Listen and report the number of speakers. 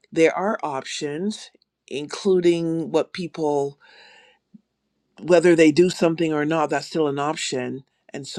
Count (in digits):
1